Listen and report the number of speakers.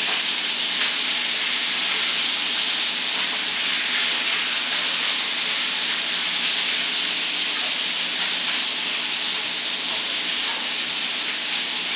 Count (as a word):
zero